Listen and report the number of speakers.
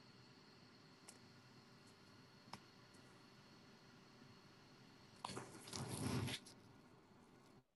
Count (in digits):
0